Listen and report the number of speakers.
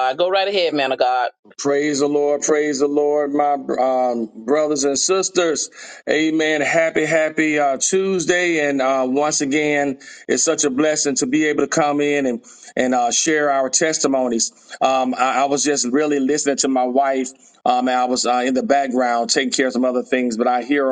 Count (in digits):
2